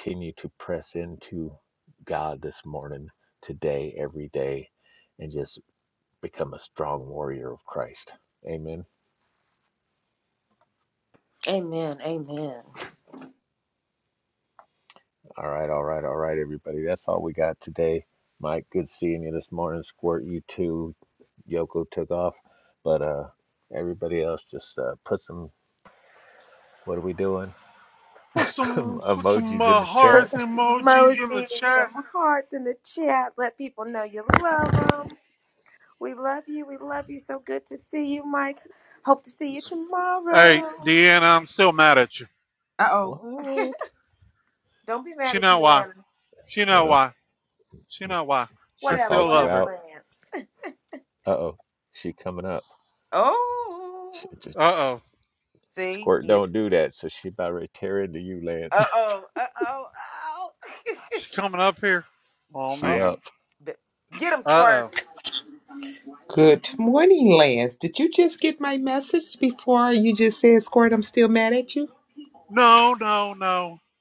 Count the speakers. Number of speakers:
four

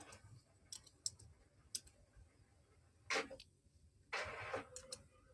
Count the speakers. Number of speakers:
zero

